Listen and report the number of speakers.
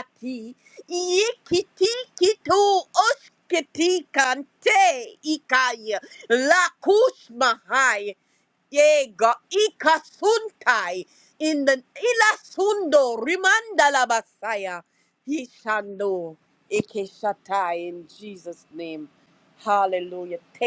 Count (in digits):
1